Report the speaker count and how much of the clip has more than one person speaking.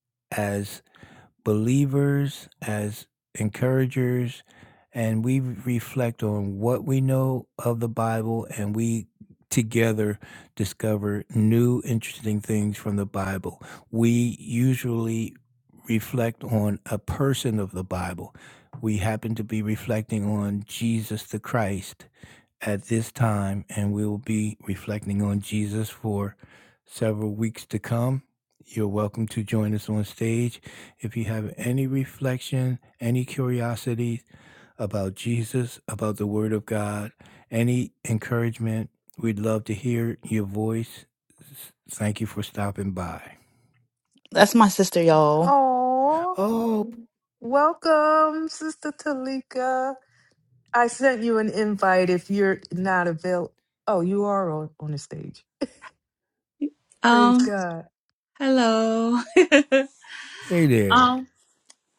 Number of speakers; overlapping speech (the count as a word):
four, about 1%